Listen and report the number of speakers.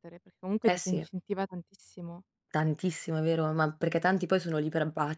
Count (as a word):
two